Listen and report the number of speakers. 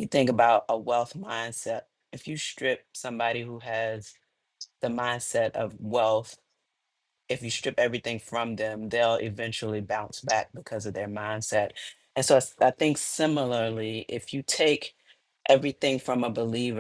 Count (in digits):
1